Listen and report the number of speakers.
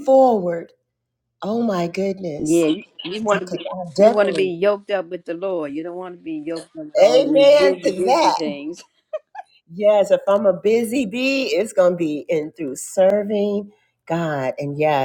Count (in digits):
2